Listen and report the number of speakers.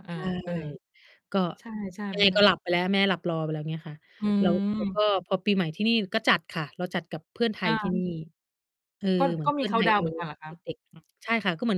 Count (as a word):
two